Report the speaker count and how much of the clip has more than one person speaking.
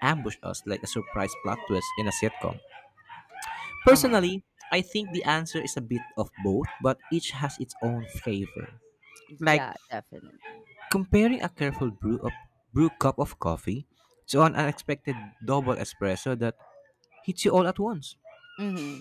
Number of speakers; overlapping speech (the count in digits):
2, about 3%